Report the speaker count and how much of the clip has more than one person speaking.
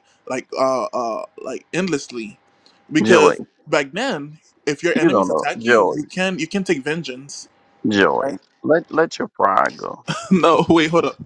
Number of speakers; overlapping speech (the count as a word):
two, about 14%